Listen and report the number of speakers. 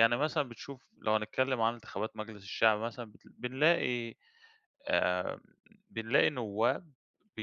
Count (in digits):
1